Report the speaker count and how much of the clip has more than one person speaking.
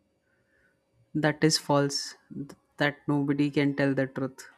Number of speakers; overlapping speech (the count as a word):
one, no overlap